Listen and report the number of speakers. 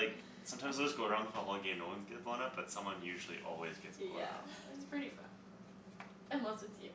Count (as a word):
two